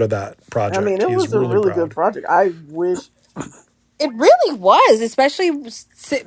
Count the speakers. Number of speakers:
3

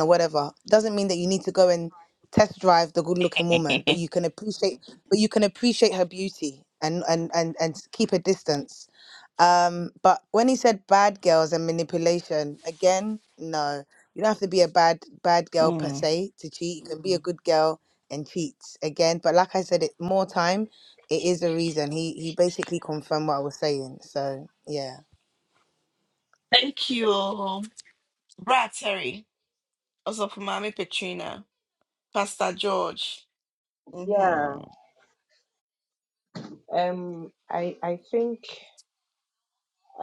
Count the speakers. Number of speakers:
3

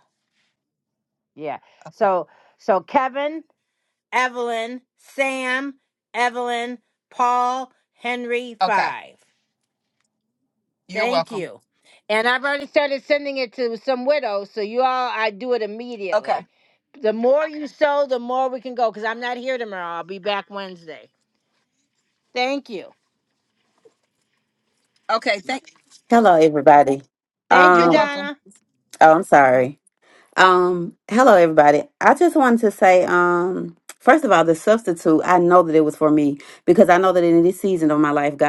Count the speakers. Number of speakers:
3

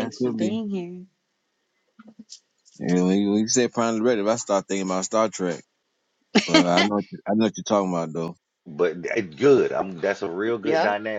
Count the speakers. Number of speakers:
3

